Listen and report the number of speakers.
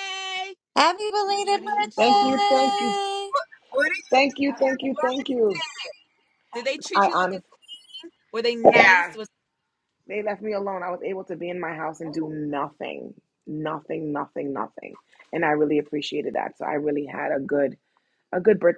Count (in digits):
3